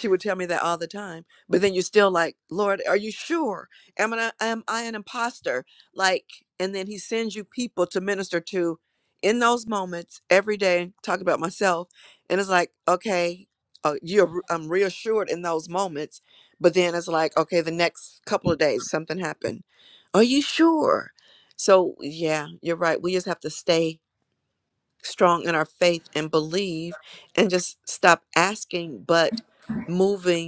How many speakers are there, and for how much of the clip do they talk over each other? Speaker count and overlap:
one, no overlap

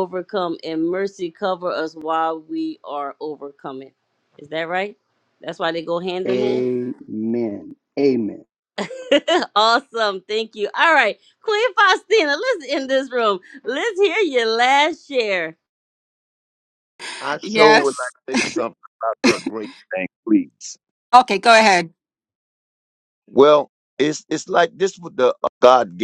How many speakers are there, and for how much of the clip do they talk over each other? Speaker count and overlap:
four, about 2%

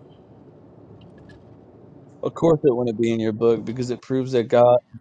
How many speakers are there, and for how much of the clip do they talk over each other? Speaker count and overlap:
one, no overlap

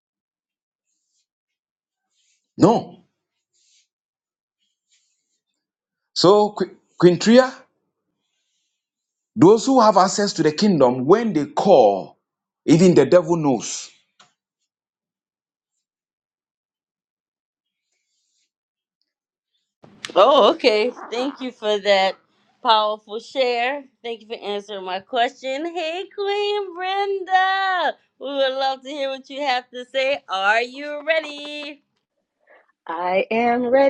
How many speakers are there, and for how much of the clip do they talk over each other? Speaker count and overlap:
three, no overlap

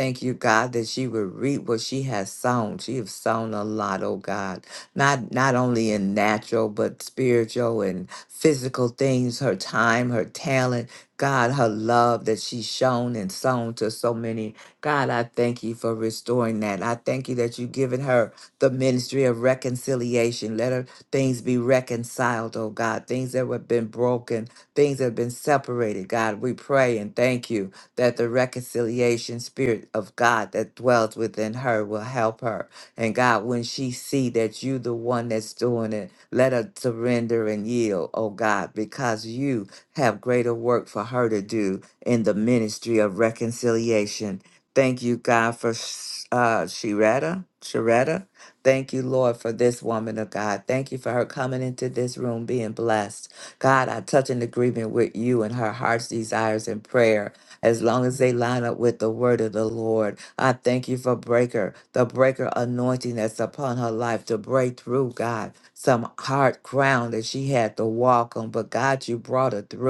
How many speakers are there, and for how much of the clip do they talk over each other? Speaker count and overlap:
one, no overlap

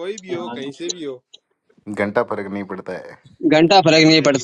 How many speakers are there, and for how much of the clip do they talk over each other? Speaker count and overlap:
three, no overlap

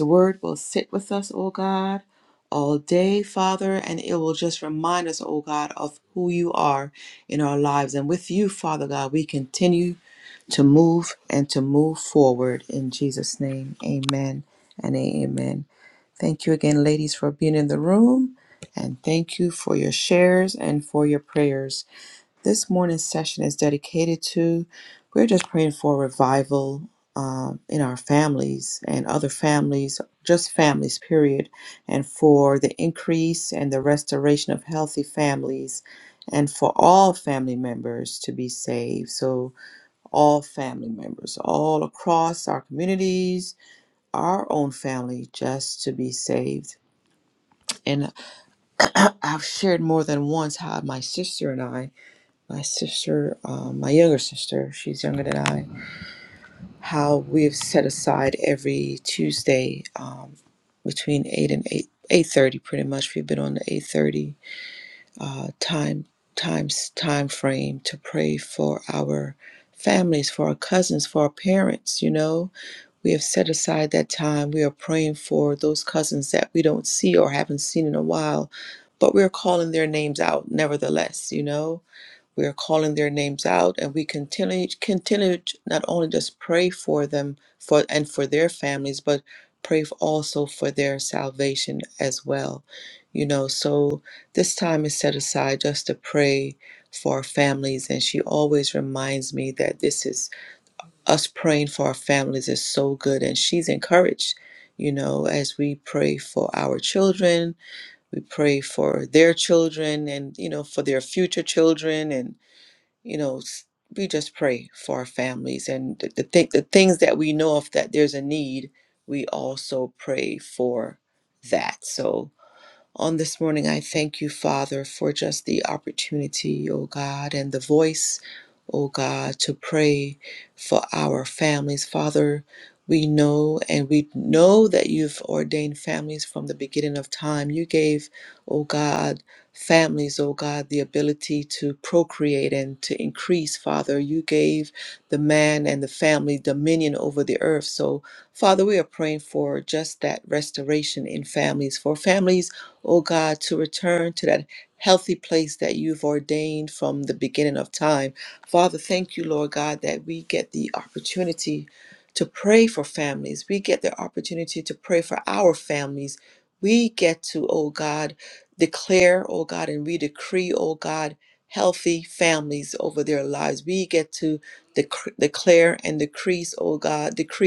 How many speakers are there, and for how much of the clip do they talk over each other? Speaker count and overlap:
one, no overlap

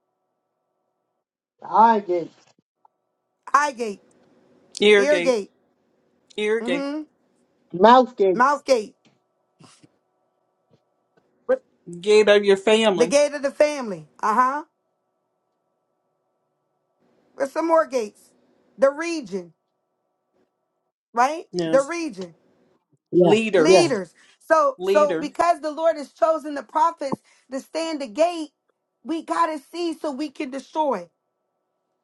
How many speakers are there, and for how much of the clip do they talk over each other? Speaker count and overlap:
three, about 6%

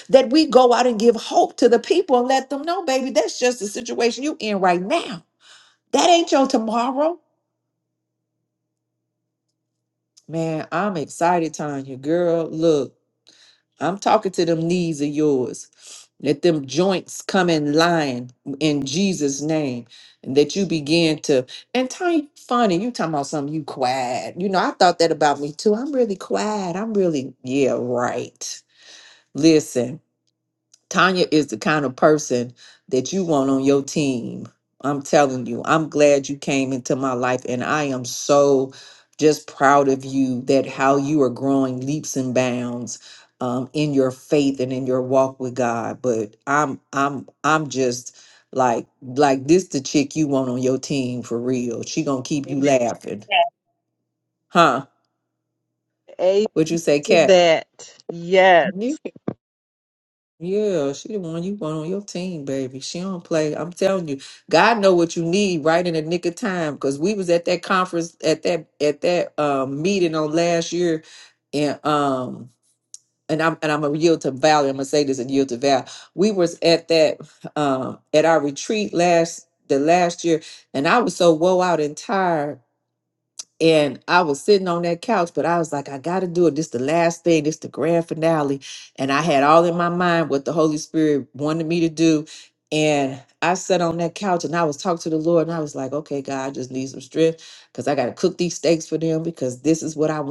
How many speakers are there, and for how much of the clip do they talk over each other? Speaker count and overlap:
two, under 1%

